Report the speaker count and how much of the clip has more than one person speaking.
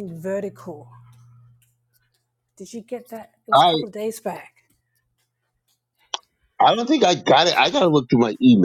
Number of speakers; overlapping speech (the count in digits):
2, about 3%